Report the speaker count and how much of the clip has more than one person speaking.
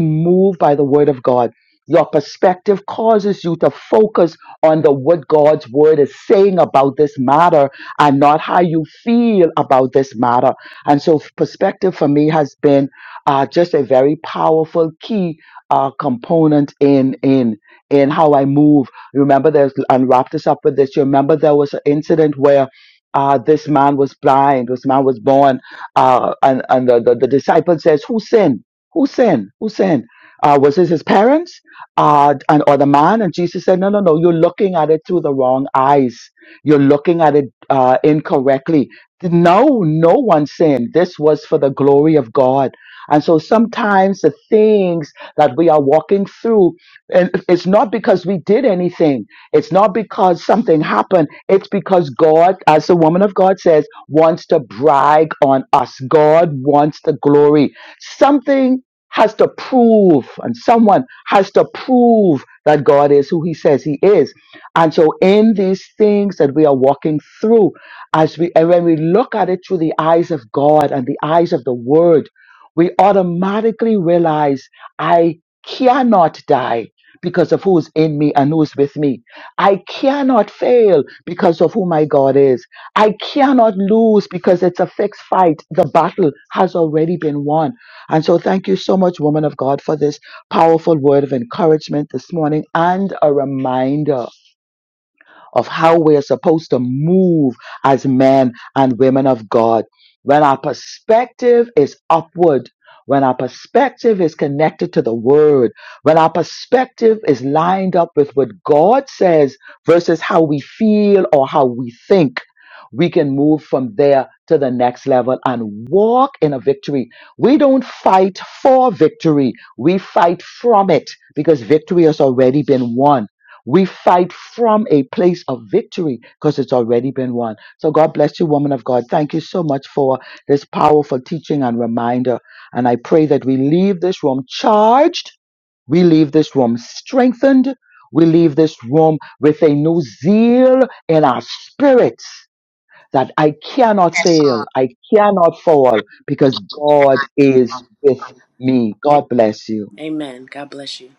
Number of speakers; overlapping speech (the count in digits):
2, under 1%